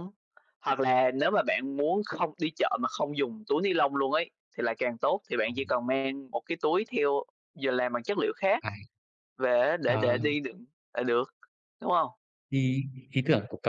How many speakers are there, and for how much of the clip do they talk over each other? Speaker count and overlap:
2, about 3%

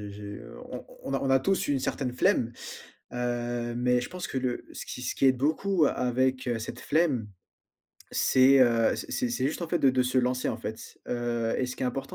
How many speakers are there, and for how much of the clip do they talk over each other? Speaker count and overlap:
1, no overlap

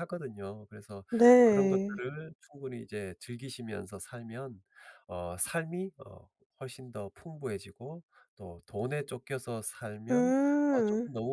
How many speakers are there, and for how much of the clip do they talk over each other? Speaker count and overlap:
2, about 10%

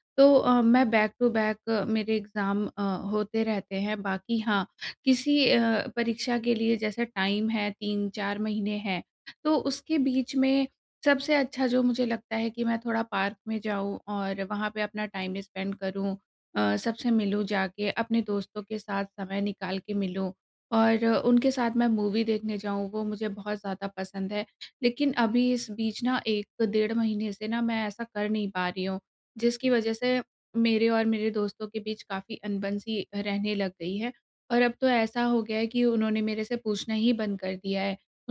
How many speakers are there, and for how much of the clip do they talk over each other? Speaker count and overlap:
1, no overlap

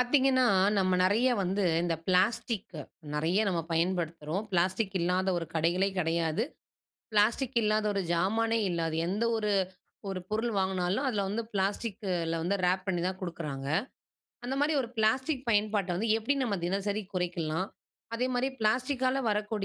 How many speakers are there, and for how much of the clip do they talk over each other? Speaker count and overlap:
1, no overlap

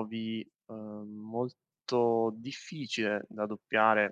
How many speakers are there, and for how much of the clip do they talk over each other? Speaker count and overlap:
1, no overlap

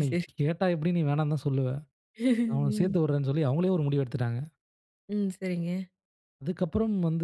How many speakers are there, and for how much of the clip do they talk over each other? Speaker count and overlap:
2, about 10%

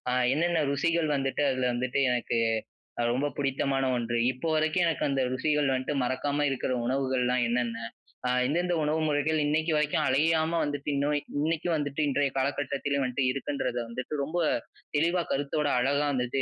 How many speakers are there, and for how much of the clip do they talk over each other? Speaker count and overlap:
1, no overlap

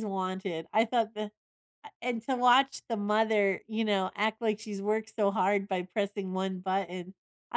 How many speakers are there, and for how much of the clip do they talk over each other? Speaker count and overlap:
1, no overlap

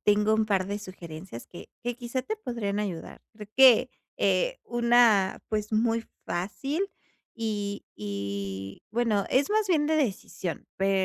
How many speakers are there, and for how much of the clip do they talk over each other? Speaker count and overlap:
1, no overlap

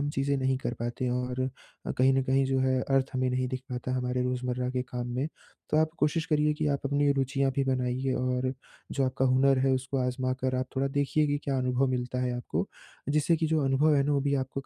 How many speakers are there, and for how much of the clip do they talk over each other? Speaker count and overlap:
1, no overlap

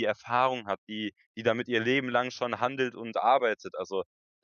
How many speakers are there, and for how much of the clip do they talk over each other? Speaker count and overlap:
1, no overlap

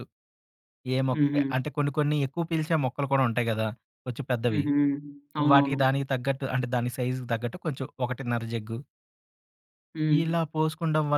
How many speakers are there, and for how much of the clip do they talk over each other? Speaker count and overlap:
2, about 7%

